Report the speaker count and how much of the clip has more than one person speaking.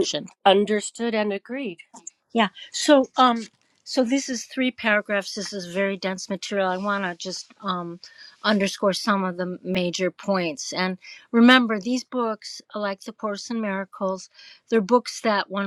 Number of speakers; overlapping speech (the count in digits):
2, about 1%